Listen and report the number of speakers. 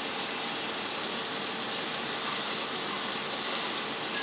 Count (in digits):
0